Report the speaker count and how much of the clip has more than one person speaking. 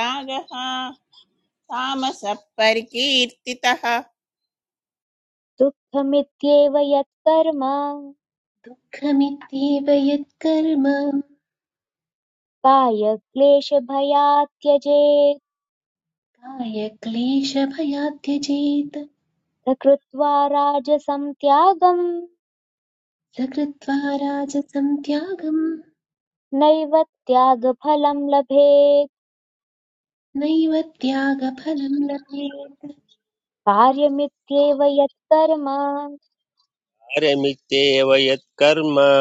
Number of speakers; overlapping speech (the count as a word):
four, no overlap